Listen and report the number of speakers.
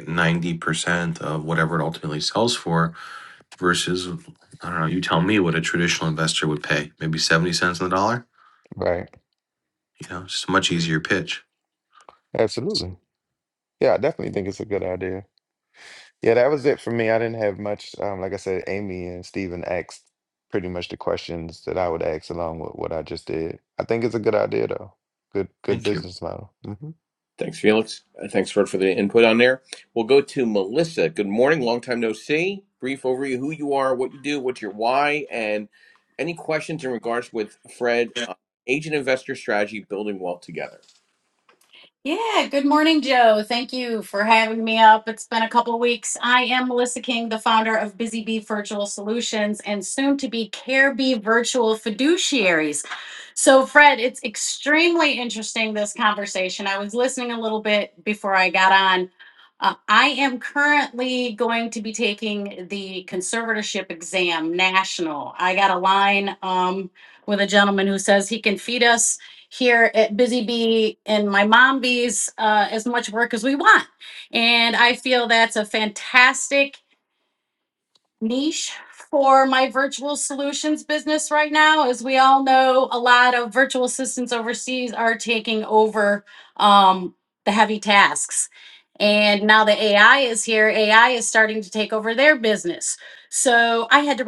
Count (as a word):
four